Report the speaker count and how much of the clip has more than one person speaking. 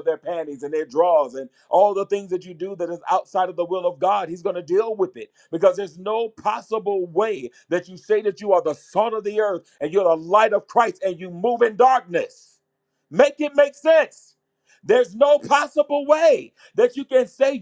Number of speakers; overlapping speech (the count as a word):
one, no overlap